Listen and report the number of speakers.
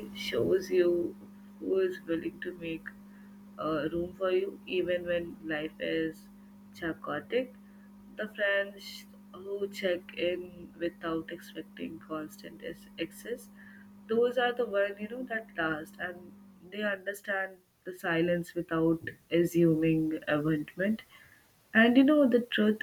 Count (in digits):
1